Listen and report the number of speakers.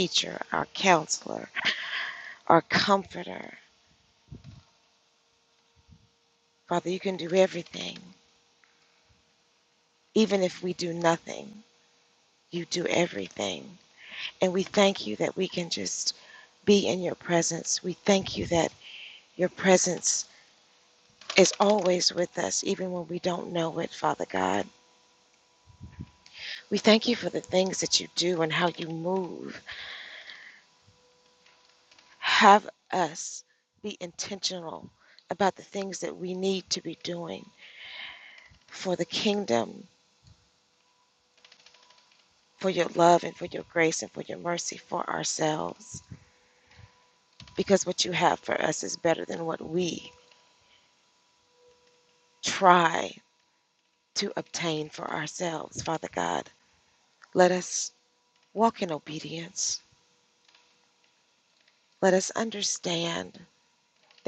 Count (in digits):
1